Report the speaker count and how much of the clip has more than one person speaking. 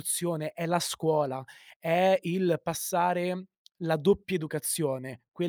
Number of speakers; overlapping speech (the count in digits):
1, no overlap